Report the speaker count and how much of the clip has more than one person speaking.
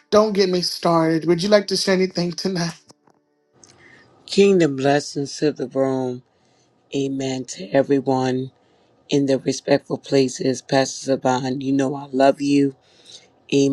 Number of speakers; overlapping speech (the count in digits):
2, no overlap